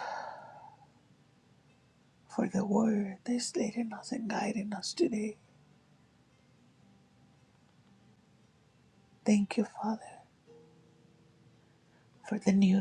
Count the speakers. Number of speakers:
1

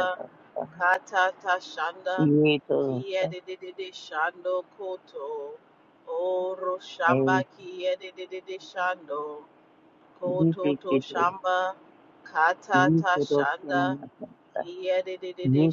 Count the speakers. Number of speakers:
2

